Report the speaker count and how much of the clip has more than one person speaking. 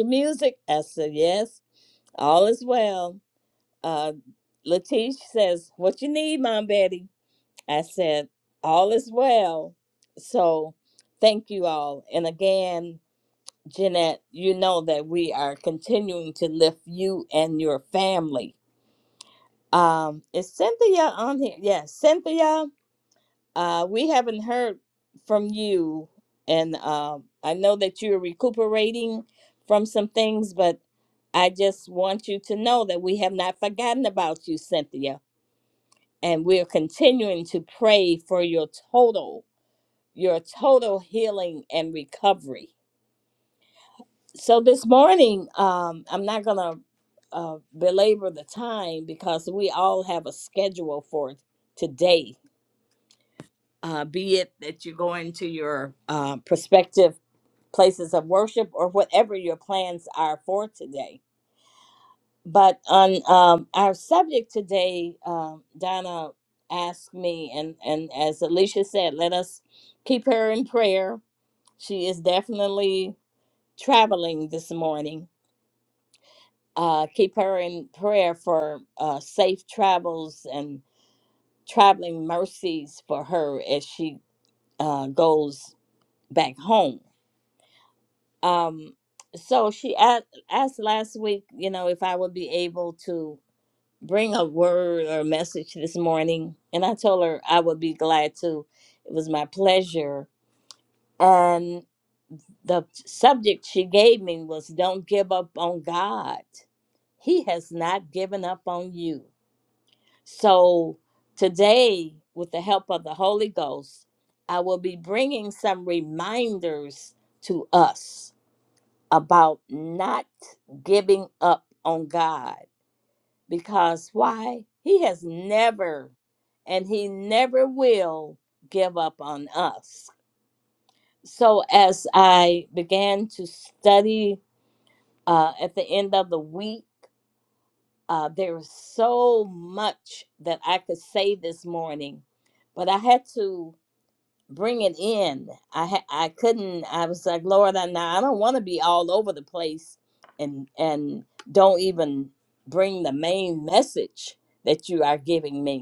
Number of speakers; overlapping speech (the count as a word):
one, no overlap